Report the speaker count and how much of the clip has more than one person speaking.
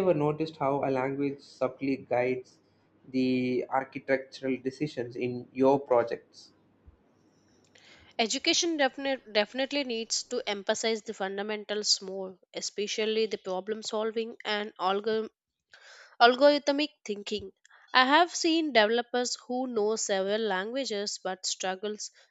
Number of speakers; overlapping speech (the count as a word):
two, no overlap